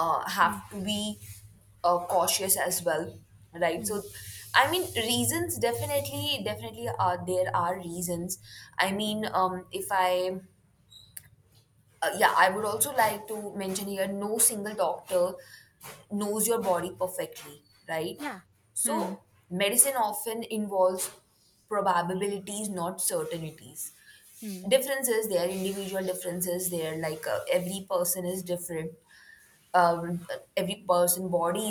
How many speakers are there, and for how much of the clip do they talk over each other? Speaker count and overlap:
2, about 2%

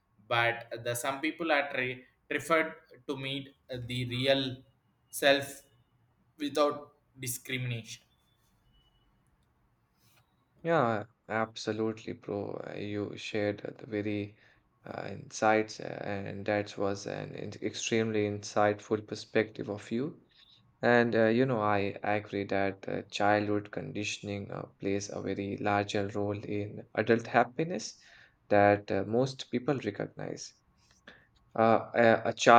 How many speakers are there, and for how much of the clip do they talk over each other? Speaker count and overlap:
2, no overlap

